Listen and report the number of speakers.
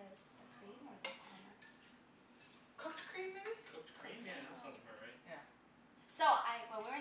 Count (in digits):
3